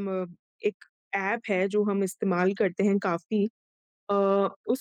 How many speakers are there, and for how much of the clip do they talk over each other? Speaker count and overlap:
1, no overlap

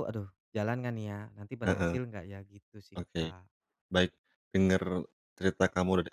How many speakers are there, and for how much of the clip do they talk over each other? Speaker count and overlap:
2, about 12%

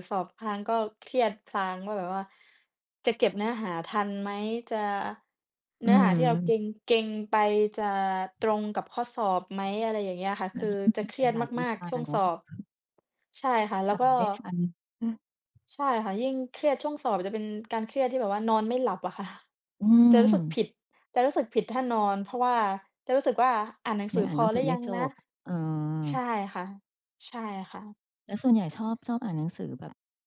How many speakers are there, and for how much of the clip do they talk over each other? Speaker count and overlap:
2, about 13%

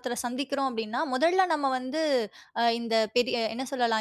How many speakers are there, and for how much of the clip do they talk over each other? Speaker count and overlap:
1, no overlap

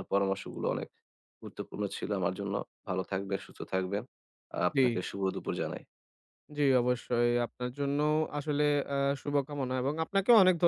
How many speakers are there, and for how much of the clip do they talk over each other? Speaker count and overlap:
2, about 1%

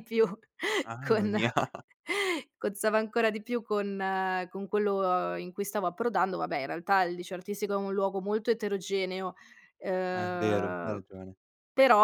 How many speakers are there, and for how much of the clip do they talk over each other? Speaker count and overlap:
2, about 9%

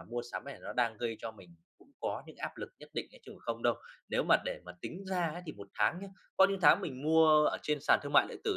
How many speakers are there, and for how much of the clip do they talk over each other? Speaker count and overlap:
1, no overlap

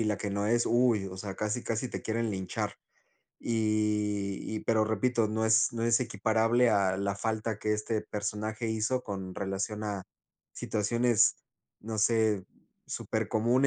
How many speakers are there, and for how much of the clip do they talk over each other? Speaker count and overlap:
1, no overlap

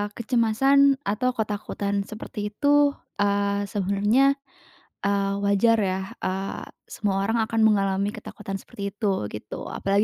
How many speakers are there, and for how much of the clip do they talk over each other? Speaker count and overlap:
1, no overlap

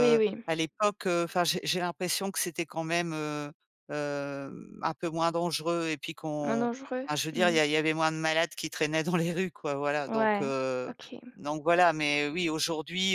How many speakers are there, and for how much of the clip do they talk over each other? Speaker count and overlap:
2, about 14%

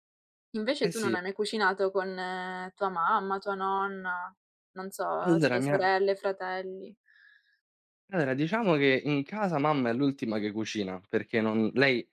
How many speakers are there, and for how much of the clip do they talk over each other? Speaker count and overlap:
2, about 9%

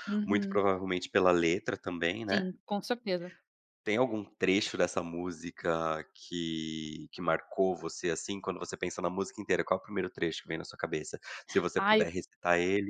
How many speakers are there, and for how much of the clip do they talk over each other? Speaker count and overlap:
2, about 6%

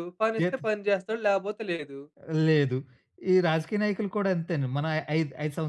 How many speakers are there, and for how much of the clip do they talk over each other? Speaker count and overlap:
2, about 4%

